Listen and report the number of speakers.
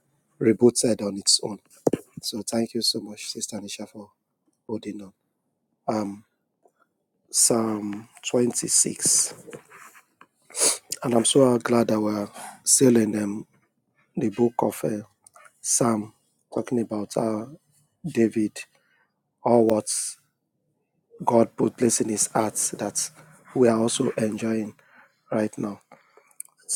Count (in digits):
1